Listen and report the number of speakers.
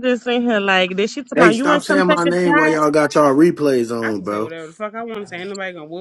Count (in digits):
3